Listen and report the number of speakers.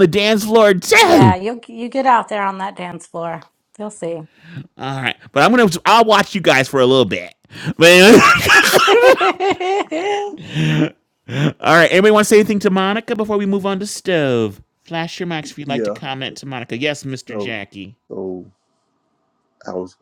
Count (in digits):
3